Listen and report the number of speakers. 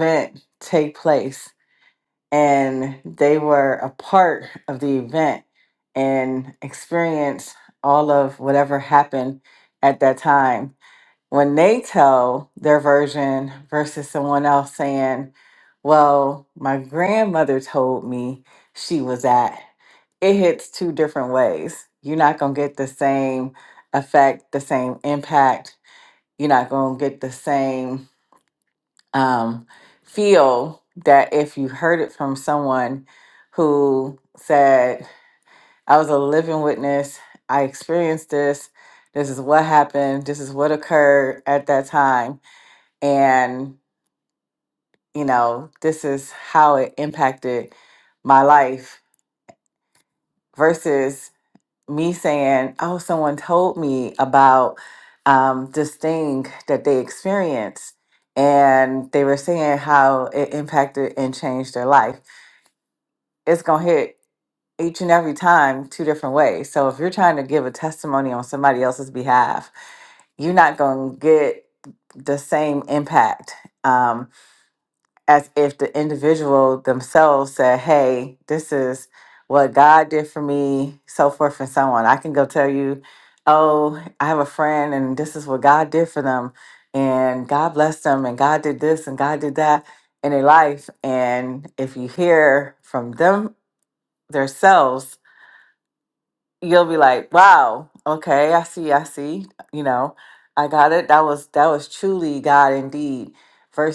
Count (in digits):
1